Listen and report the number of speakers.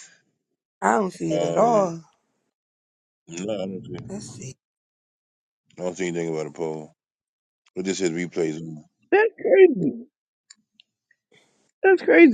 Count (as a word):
three